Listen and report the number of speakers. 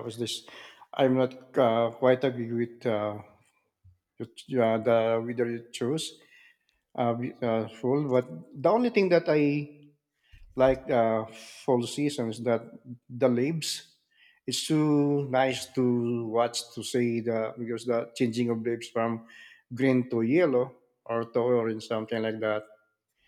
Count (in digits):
1